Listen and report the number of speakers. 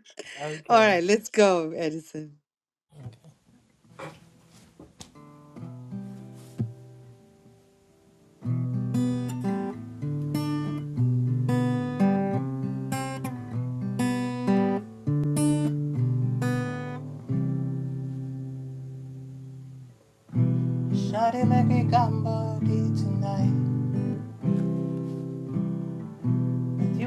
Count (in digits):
2